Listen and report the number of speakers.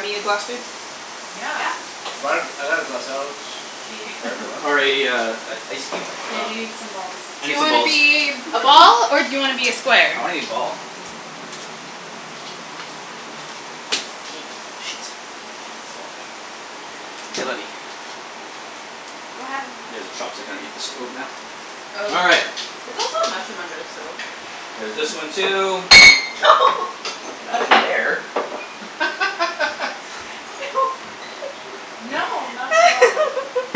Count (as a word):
four